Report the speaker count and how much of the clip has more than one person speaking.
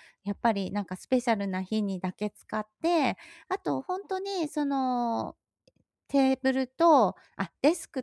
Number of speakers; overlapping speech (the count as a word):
one, no overlap